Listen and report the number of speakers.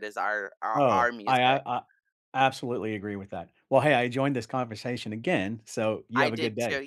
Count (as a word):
two